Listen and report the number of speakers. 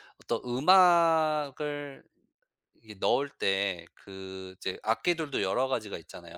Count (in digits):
1